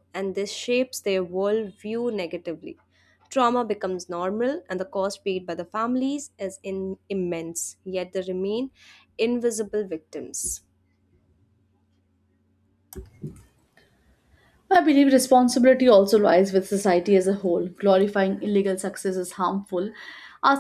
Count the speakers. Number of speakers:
two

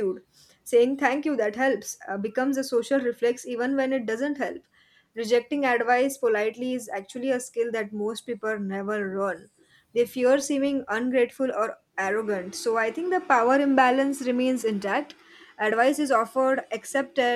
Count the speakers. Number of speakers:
one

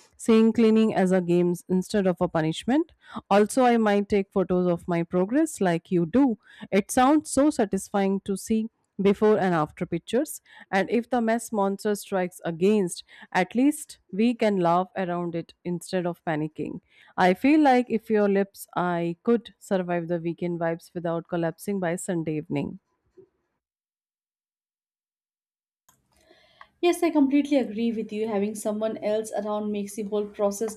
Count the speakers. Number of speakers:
two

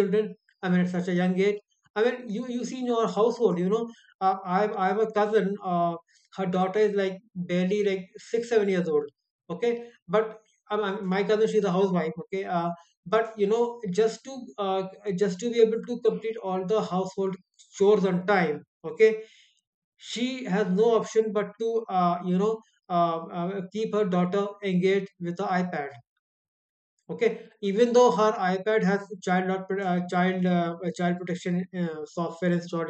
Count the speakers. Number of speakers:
one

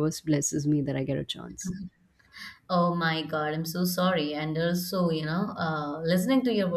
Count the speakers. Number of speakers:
two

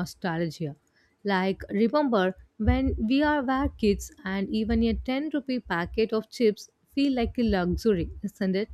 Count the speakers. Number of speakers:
one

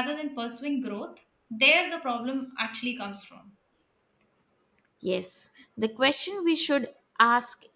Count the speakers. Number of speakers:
two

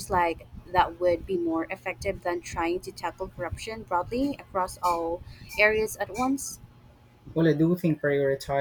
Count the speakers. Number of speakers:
two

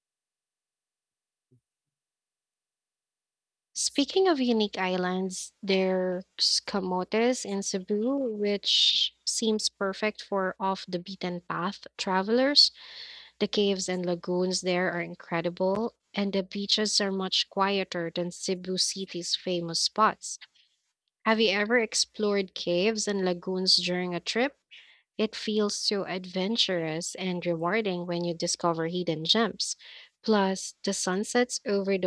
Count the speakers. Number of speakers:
one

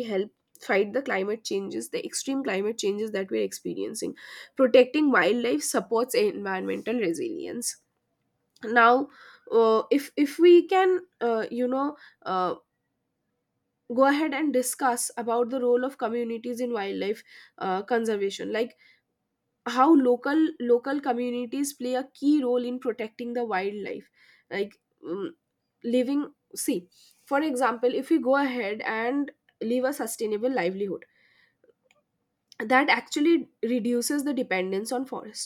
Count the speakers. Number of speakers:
one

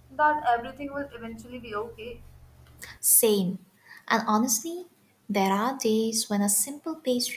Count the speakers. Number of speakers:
two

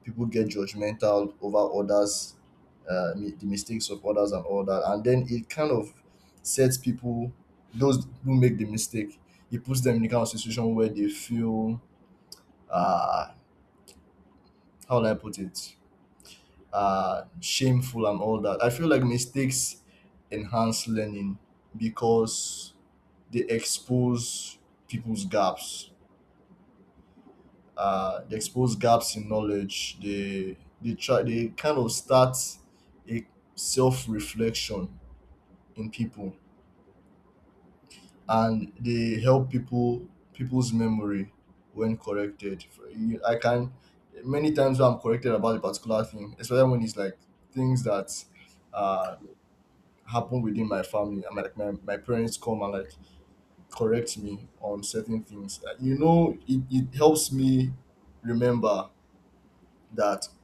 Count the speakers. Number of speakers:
one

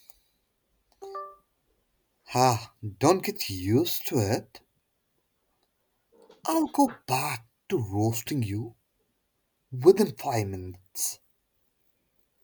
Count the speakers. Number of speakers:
one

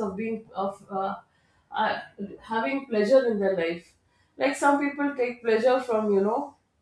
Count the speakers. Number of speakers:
one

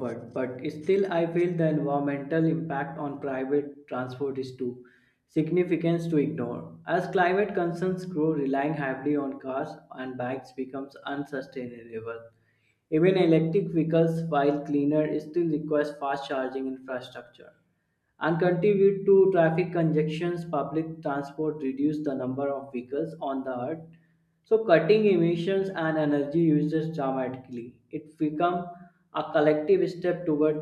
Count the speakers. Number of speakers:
one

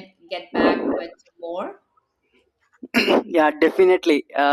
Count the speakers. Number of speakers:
two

